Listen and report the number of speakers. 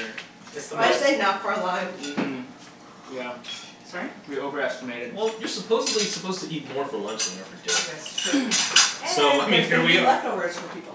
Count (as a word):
four